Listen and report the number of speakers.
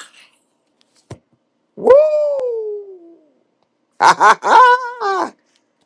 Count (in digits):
1